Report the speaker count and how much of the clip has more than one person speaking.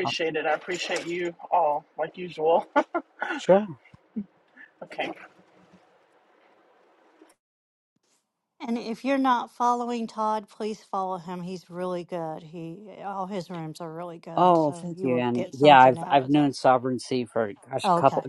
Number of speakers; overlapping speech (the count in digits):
3, about 14%